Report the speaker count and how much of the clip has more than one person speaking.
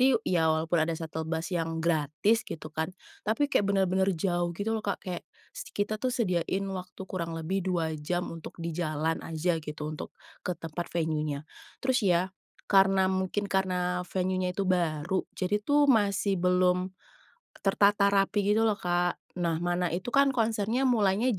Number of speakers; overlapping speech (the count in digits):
1, no overlap